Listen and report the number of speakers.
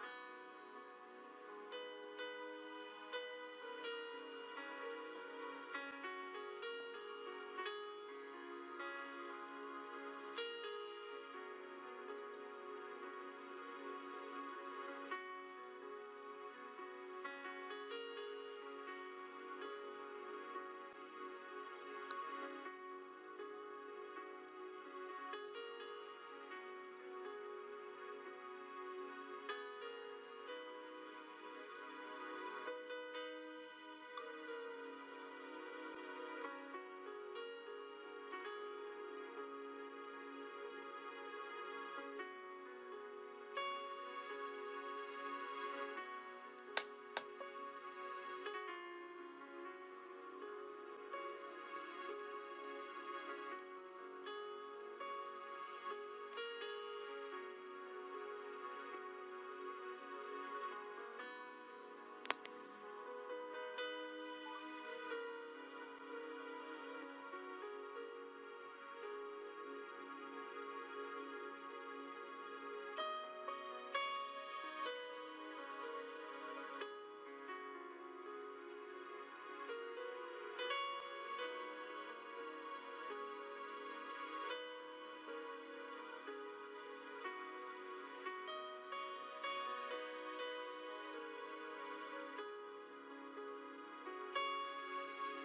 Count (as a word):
zero